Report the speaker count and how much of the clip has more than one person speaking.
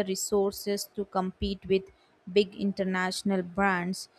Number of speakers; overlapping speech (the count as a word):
one, no overlap